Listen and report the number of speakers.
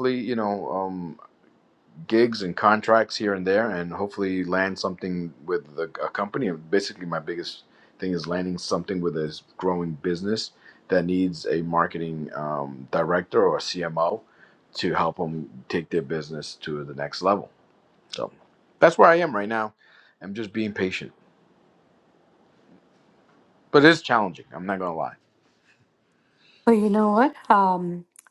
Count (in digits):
2